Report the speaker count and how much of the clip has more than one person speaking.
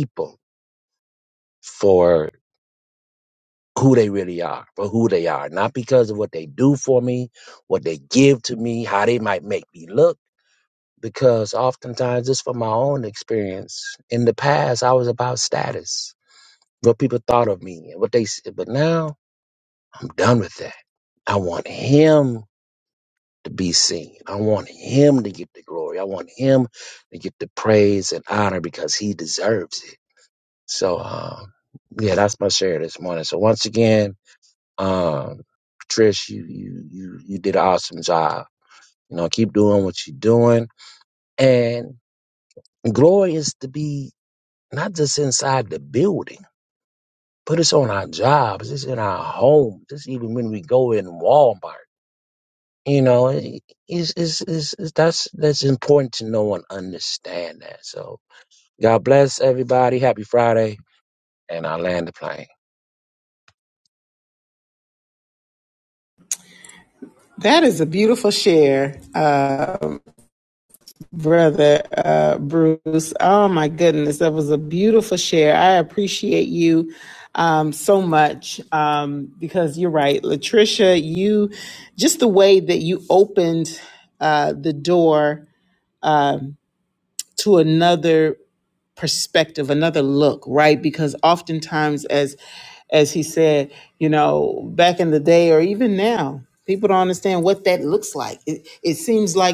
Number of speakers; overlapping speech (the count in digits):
2, no overlap